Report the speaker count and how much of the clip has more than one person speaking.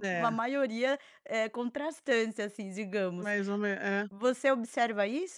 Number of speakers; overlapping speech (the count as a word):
two, about 8%